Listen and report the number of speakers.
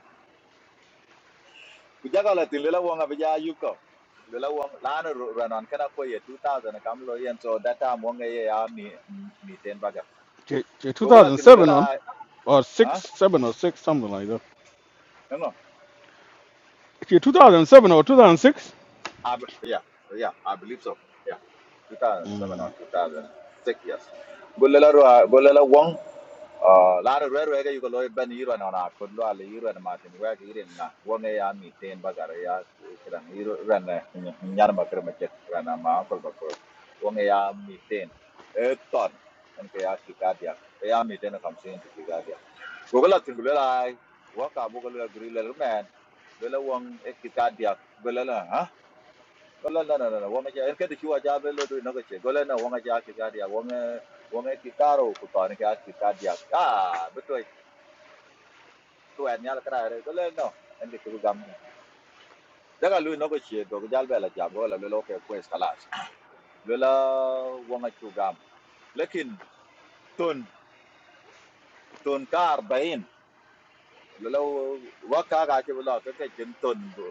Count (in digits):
2